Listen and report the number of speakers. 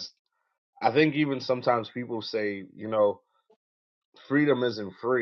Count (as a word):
one